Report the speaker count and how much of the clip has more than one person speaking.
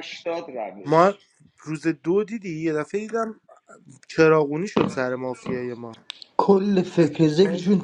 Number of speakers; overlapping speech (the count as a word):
three, about 3%